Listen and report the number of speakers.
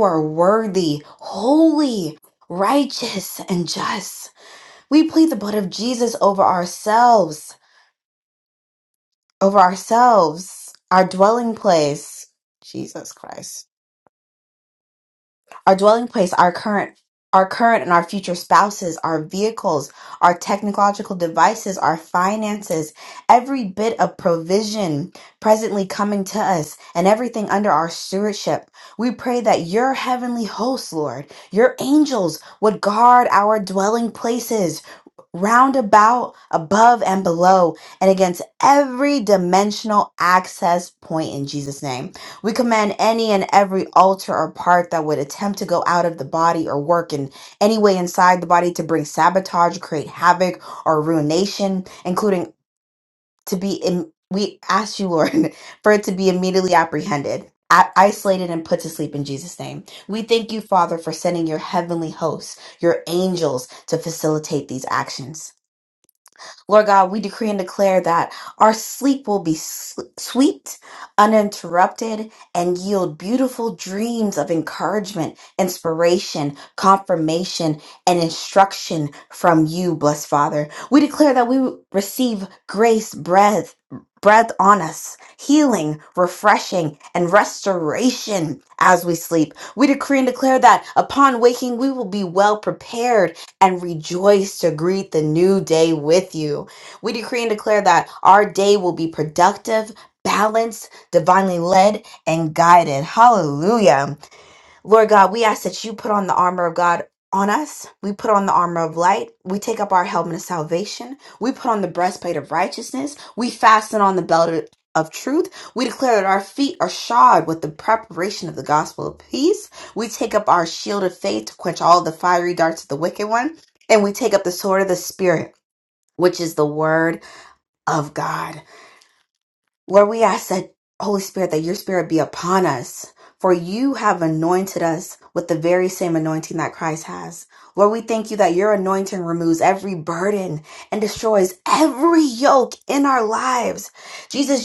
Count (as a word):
one